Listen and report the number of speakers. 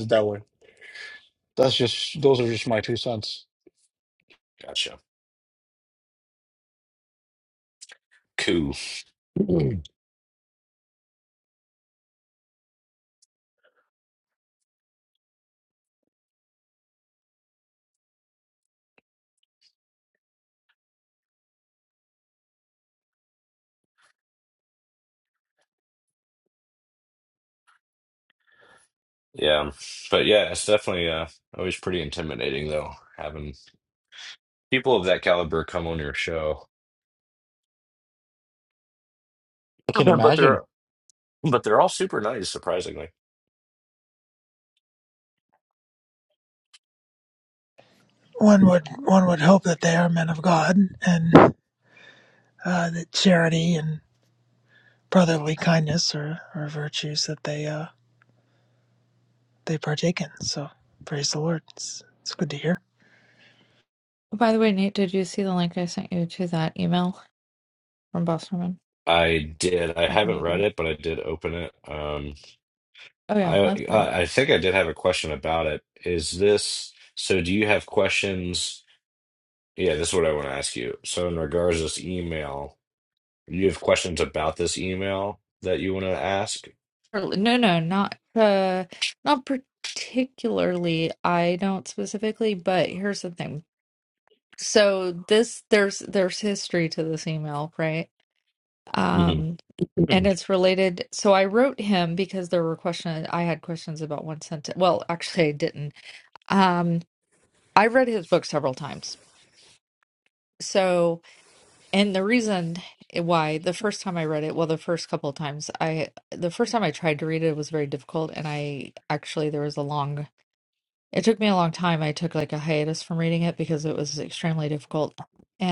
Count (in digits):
4